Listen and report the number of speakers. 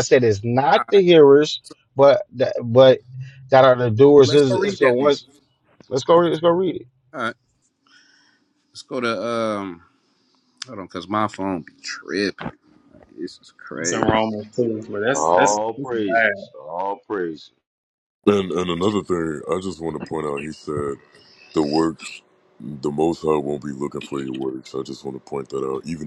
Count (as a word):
five